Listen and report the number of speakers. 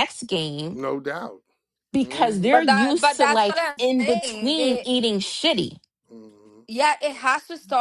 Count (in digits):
3